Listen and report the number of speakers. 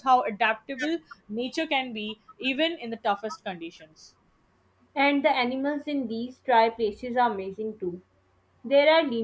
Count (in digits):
2